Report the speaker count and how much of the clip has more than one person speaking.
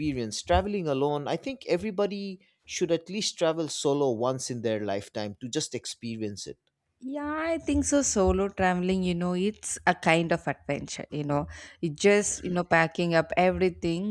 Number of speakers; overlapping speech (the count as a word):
two, no overlap